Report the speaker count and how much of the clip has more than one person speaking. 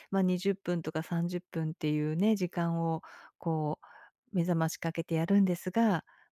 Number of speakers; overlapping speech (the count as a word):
one, no overlap